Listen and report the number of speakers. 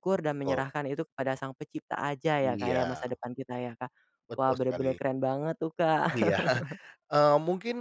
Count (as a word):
two